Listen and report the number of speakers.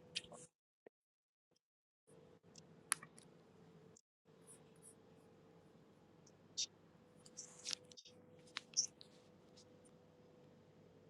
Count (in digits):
0